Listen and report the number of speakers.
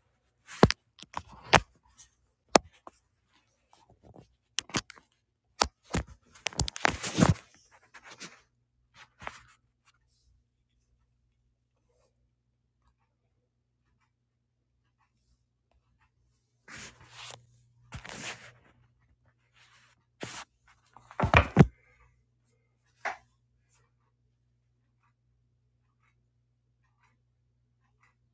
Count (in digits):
0